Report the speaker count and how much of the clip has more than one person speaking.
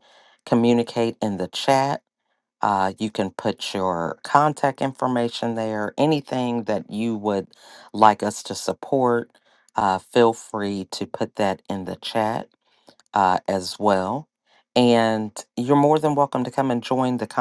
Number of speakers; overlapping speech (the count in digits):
1, no overlap